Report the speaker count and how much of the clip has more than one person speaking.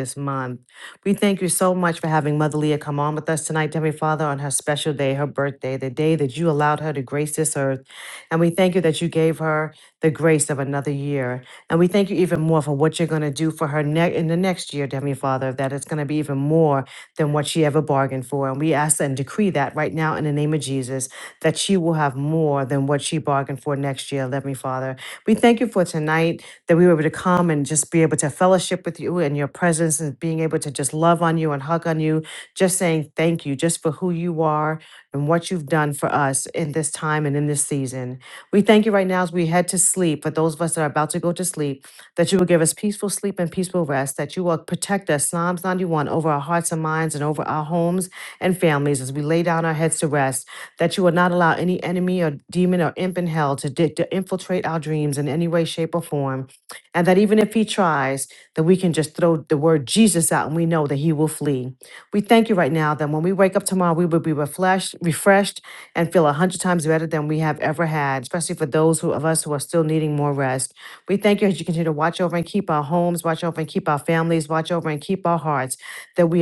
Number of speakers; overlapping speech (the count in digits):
1, no overlap